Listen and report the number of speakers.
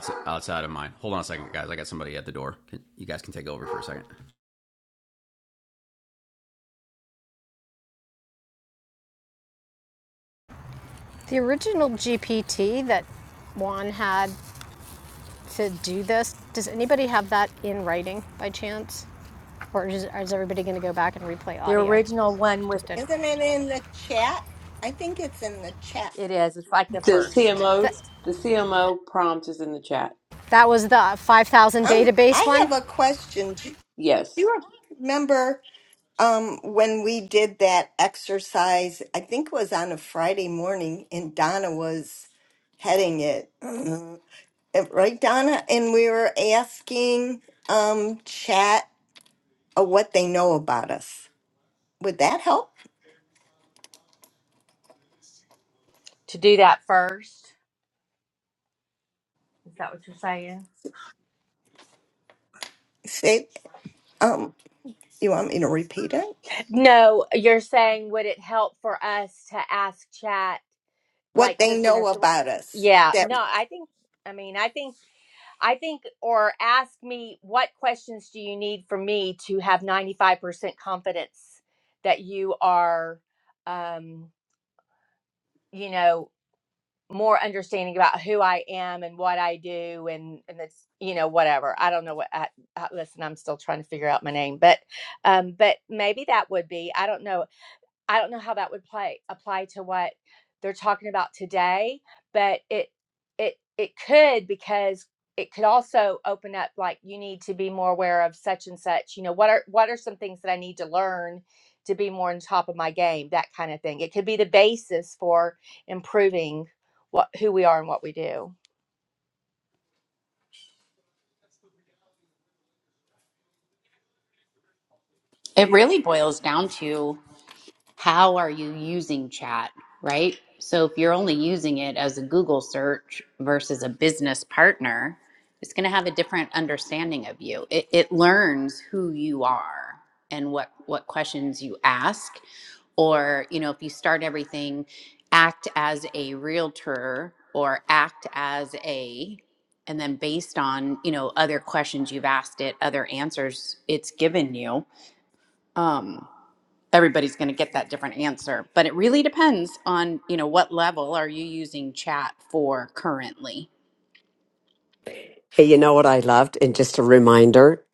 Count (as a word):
seven